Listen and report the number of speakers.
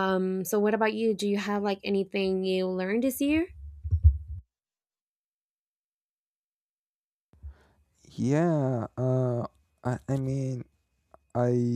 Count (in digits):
2